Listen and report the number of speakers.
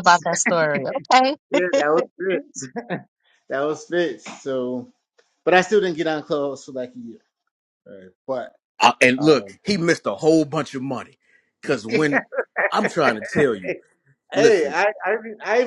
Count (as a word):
three